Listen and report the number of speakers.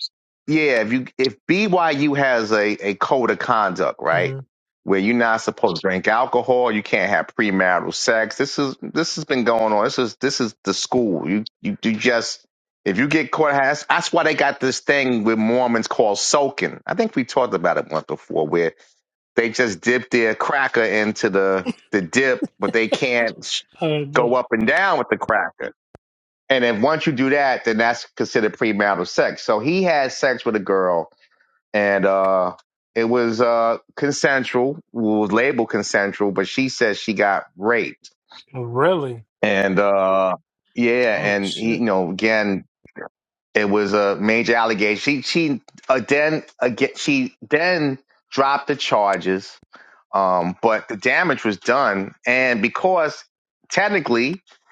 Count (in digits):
2